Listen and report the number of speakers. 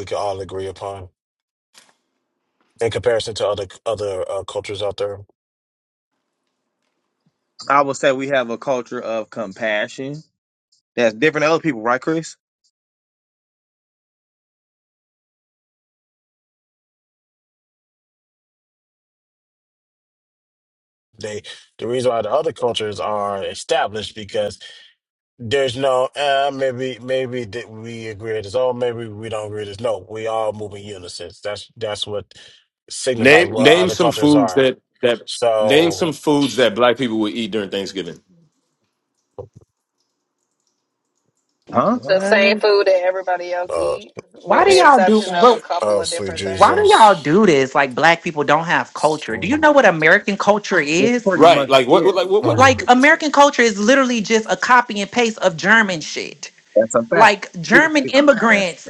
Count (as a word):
five